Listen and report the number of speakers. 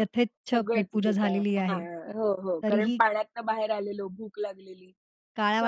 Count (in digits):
2